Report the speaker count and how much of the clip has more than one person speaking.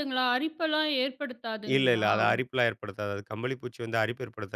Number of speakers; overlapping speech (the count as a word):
two, about 8%